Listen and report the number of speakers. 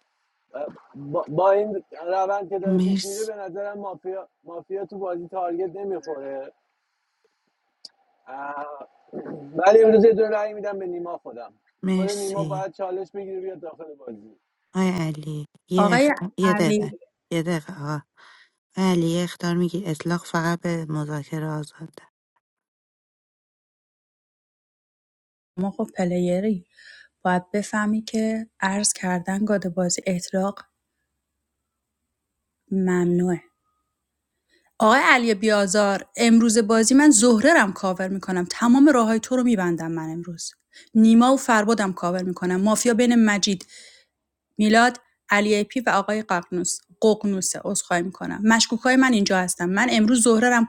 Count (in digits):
3